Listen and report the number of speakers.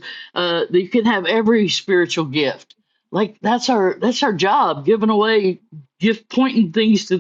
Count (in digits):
1